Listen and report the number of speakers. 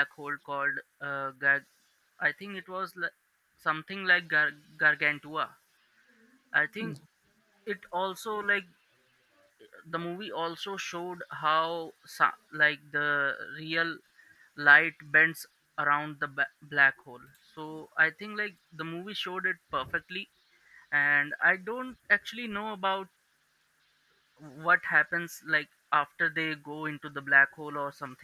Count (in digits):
1